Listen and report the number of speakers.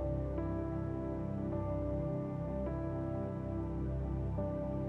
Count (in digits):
0